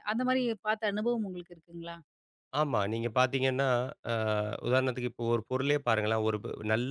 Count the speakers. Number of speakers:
2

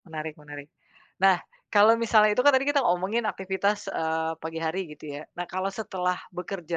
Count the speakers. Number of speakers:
1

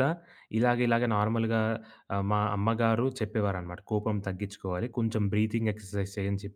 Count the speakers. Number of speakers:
1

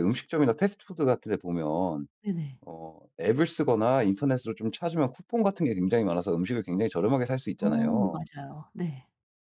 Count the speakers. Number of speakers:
2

